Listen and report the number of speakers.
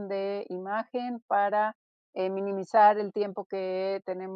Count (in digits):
1